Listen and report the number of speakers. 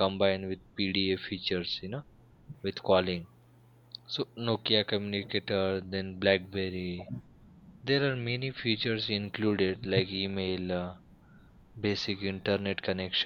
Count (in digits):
1